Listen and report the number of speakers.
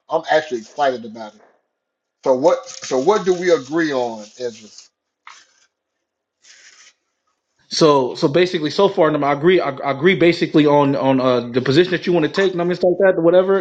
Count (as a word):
two